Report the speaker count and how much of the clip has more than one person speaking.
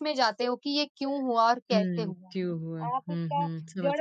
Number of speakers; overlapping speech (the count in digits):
2, about 41%